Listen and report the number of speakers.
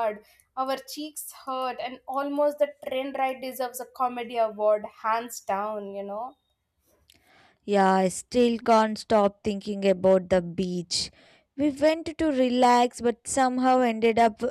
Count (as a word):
two